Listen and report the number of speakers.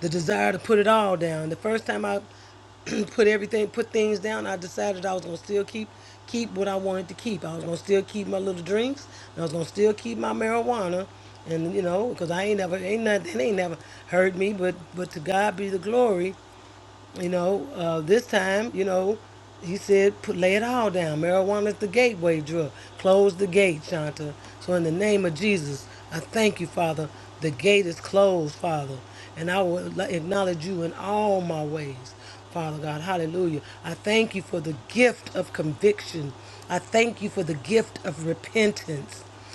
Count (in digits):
1